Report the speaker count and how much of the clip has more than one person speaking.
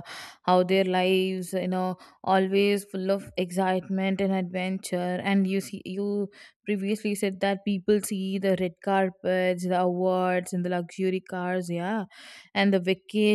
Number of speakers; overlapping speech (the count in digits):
1, no overlap